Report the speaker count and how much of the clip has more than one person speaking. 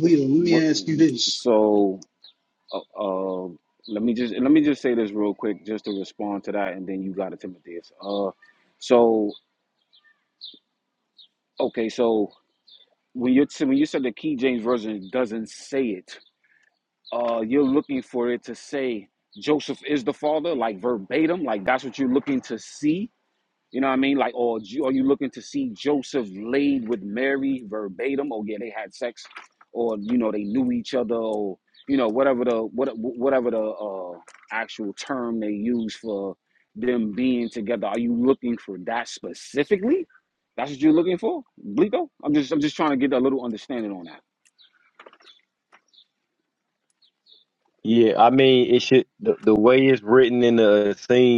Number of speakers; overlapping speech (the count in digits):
3, about 1%